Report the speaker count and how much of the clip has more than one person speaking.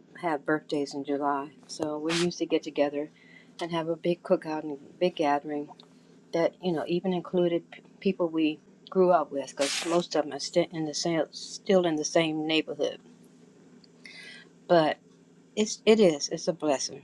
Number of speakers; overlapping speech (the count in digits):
1, no overlap